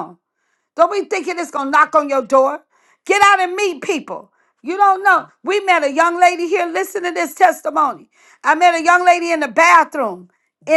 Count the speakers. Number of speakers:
1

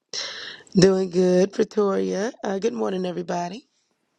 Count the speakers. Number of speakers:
1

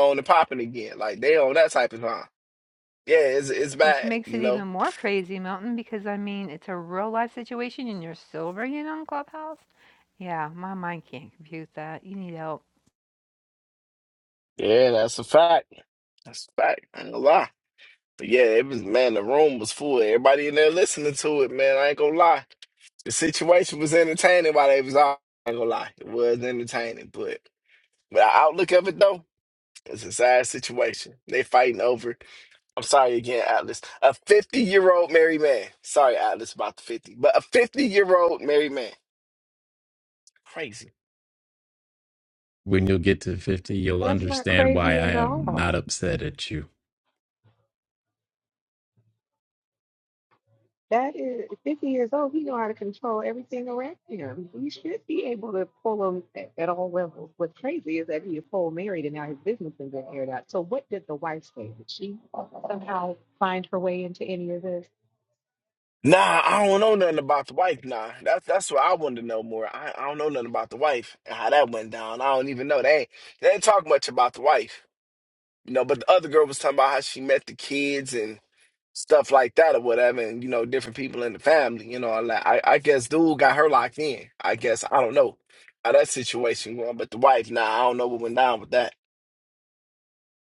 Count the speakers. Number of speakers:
4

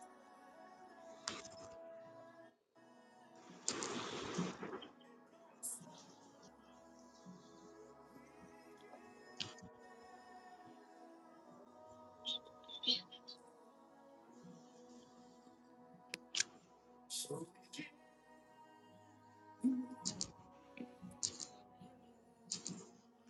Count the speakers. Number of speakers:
0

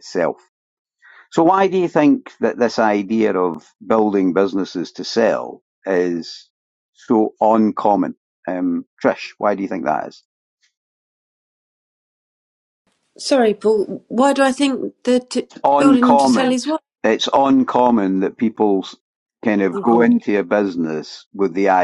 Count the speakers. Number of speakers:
2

